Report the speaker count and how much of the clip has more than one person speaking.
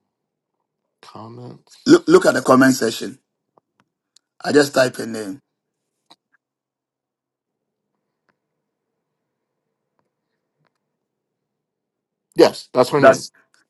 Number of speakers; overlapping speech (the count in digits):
2, about 1%